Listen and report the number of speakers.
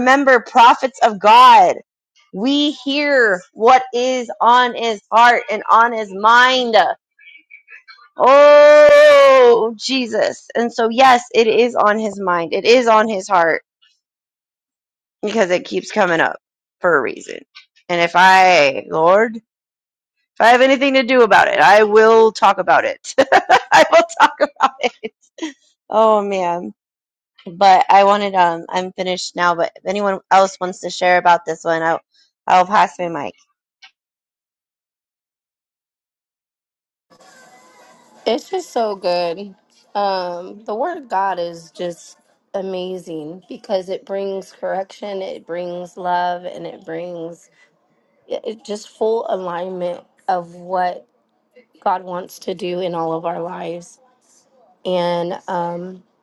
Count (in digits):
2